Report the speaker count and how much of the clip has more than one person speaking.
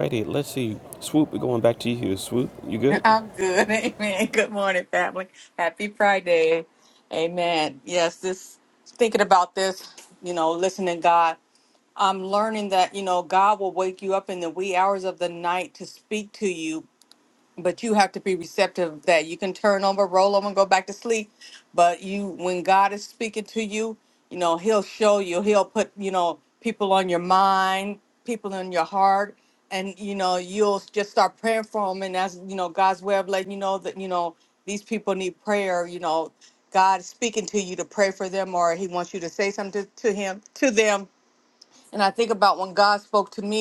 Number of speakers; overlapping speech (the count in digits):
2, under 1%